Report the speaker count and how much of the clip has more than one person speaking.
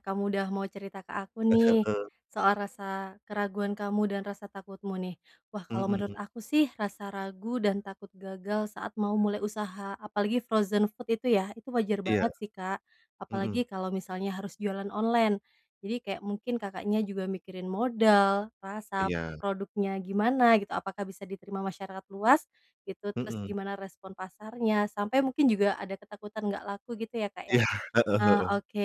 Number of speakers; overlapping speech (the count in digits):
2, about 9%